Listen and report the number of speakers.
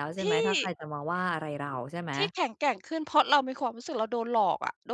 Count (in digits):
2